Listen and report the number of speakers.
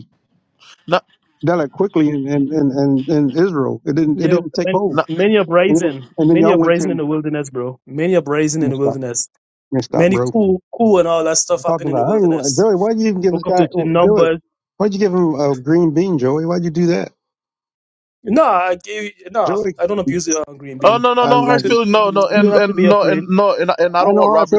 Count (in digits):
3